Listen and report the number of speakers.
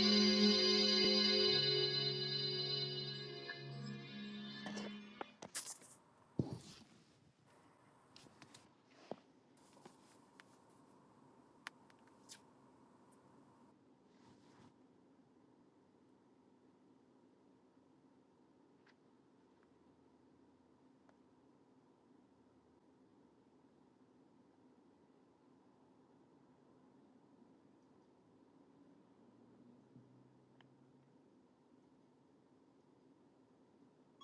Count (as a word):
zero